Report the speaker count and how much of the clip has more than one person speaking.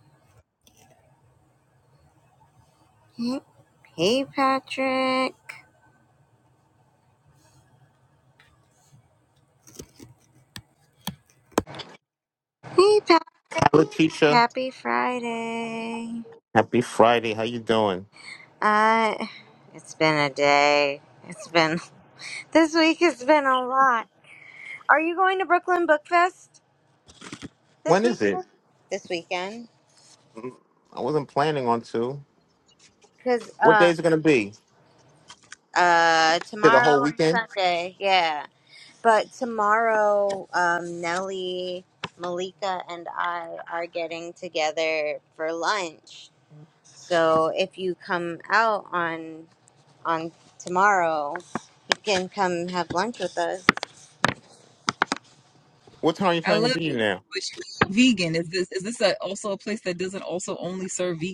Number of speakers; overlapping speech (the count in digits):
3, about 4%